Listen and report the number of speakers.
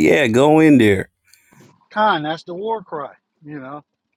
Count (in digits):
2